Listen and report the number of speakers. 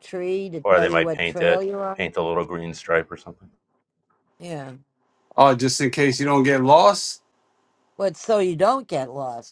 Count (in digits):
3